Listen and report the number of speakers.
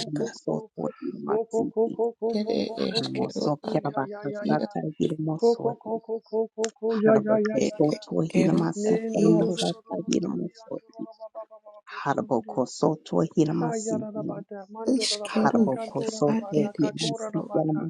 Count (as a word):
three